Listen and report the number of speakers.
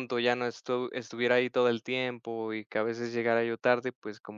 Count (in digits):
1